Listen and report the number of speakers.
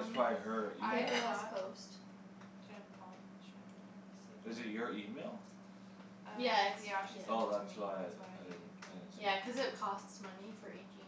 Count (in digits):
3